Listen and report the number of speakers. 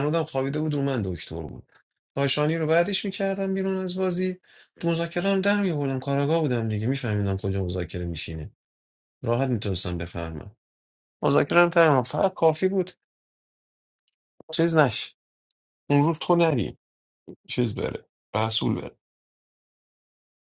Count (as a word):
one